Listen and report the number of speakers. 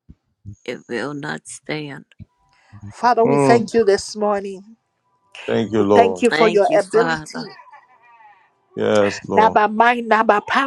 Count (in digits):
3